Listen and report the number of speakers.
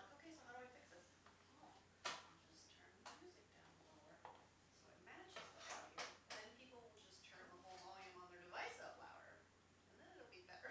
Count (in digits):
1